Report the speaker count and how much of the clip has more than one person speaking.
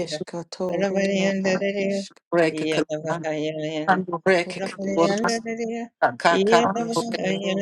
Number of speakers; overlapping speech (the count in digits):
3, about 48%